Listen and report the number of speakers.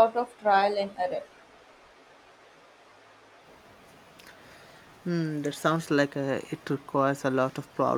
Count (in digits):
2